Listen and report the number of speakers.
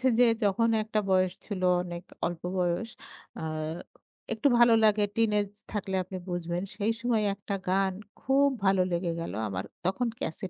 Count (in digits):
1